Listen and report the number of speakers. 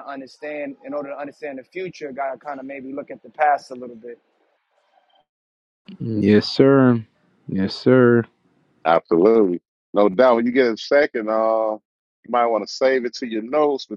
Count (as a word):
three